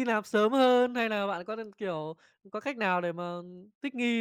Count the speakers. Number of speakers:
1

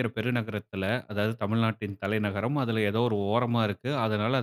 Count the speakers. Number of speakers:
1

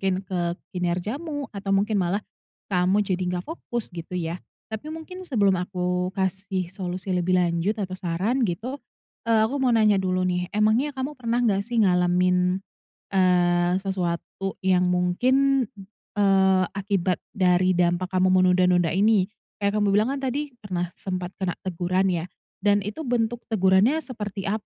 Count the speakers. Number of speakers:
1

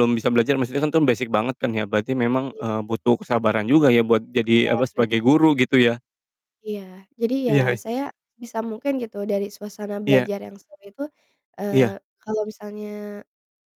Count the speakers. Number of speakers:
2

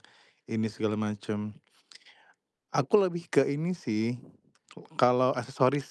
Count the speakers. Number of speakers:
1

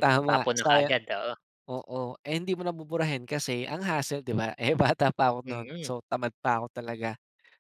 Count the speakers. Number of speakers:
2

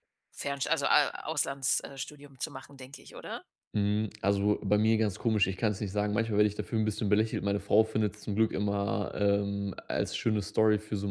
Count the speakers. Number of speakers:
2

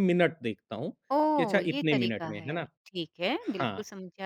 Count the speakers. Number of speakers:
2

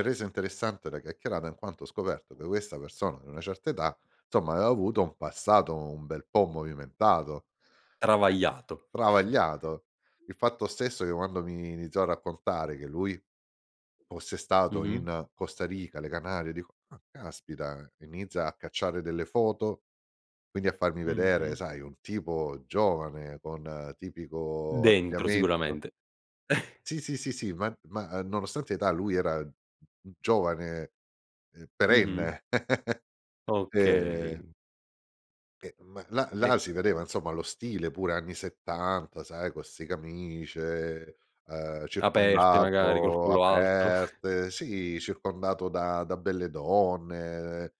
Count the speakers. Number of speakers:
2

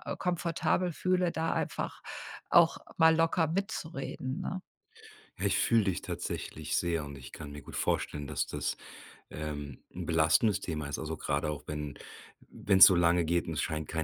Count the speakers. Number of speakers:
2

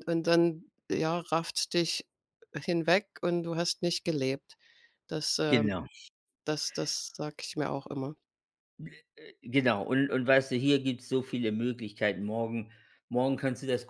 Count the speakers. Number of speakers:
2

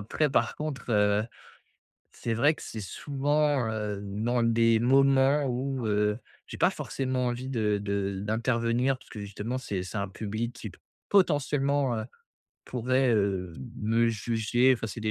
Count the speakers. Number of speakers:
1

